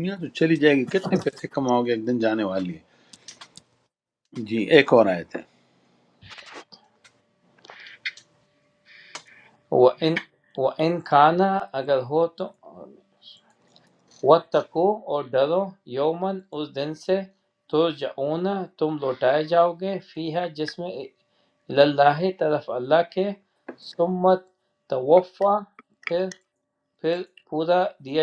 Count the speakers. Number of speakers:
two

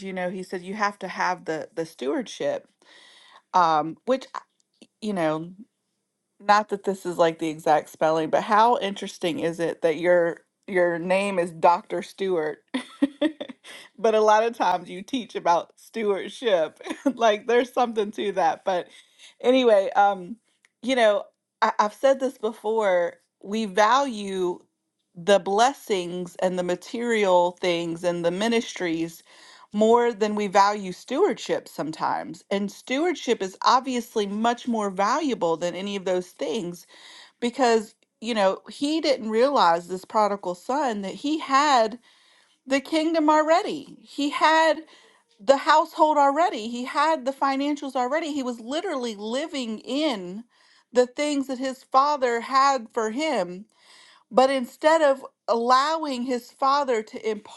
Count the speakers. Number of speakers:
one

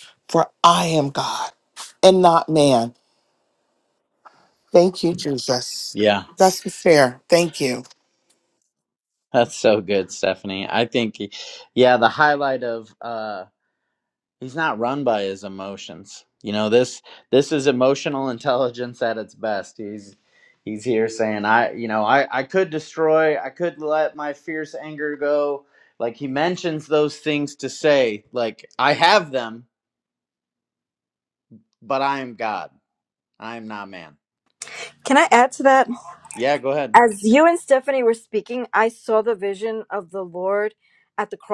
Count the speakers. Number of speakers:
three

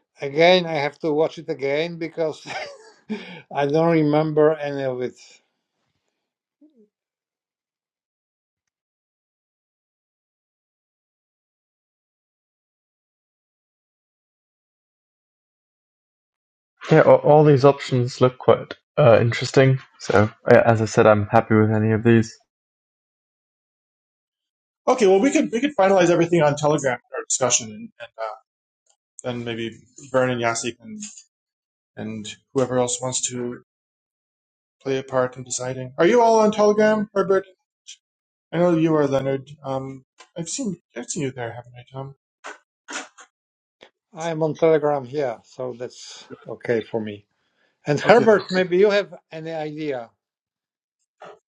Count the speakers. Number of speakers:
three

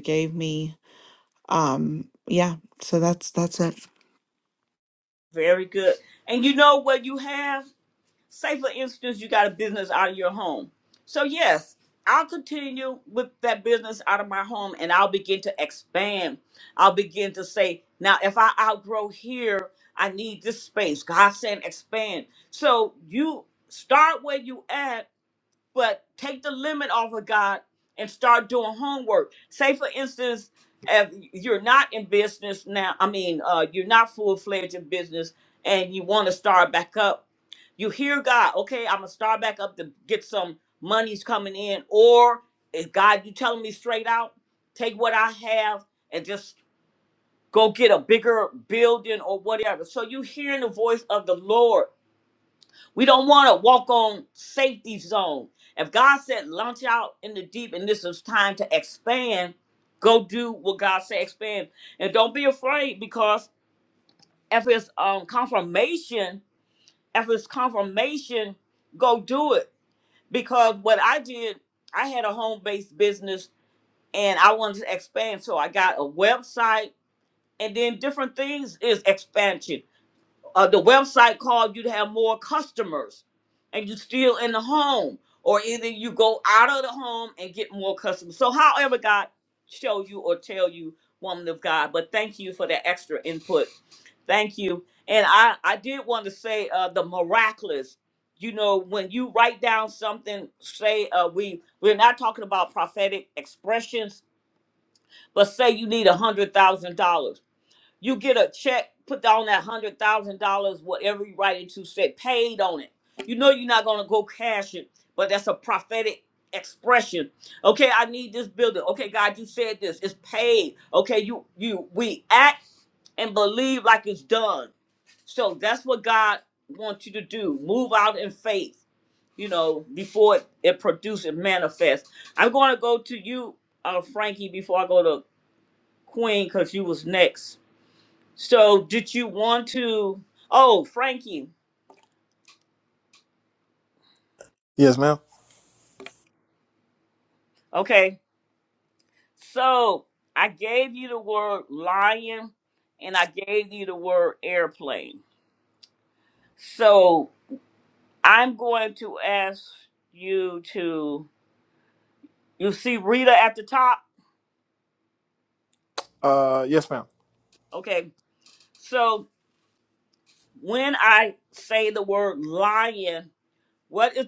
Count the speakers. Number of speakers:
three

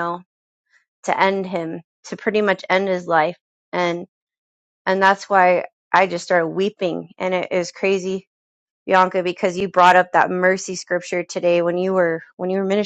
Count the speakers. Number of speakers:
one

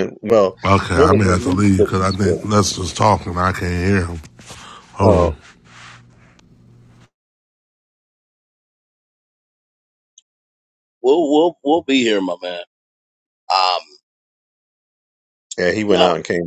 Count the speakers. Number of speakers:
three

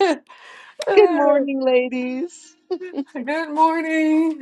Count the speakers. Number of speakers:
two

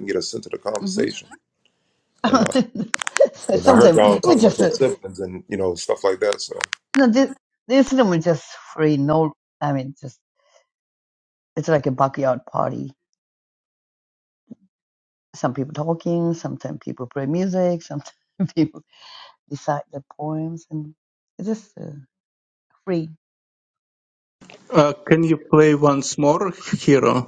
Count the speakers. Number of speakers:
three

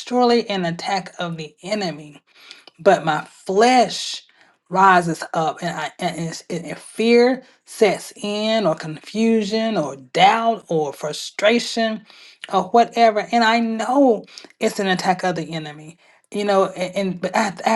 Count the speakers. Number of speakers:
one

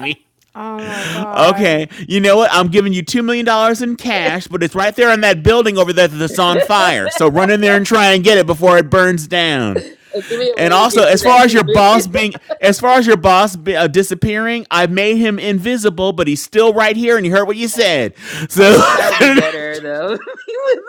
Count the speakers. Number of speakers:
three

